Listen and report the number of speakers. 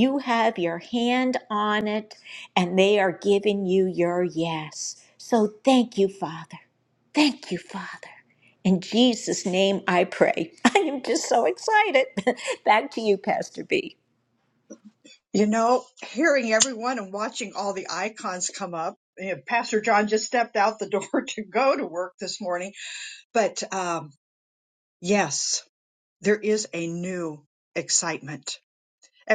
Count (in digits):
2